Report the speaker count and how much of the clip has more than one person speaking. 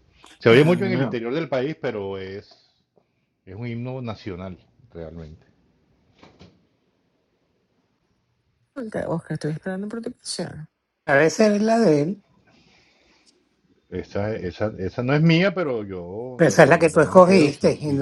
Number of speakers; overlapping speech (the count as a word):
three, about 12%